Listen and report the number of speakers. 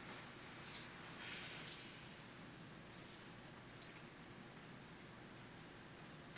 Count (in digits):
0